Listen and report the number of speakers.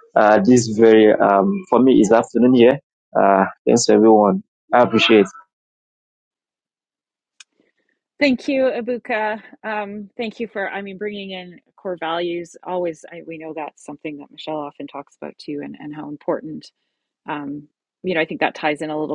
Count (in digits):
2